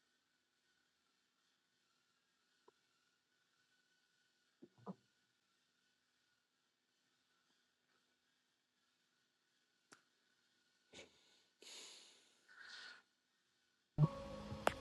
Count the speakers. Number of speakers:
zero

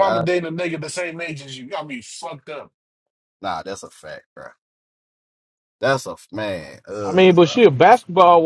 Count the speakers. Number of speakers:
three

